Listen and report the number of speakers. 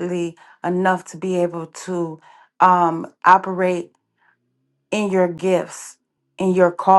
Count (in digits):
1